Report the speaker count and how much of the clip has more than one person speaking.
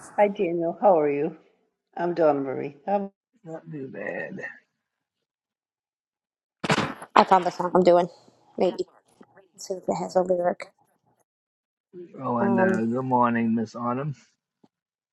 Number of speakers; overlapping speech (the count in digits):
3, about 3%